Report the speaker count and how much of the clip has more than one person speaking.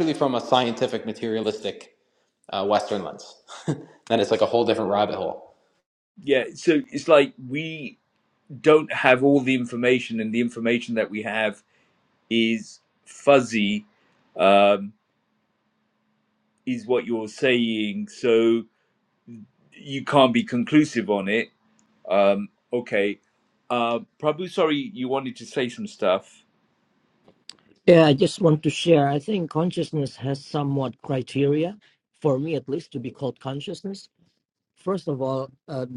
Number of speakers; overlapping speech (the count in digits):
3, no overlap